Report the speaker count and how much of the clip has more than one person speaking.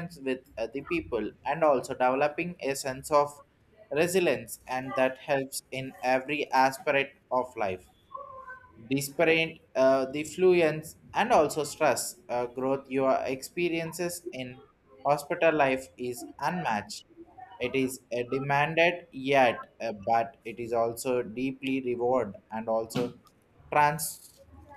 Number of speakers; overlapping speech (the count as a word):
one, no overlap